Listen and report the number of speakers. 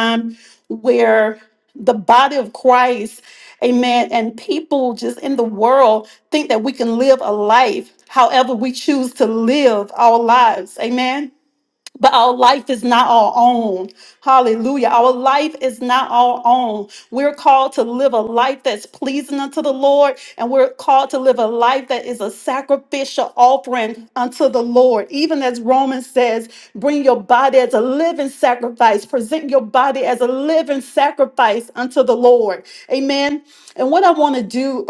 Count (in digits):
1